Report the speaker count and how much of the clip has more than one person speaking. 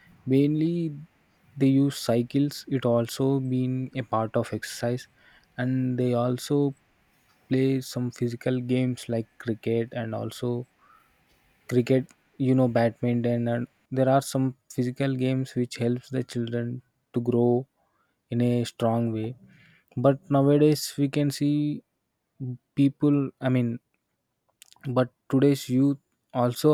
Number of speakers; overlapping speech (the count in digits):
1, no overlap